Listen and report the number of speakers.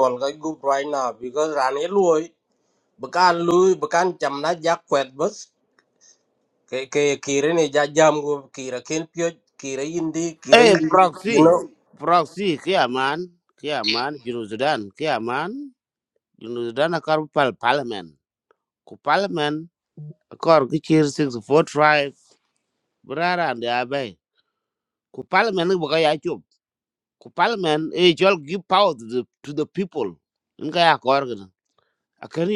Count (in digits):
2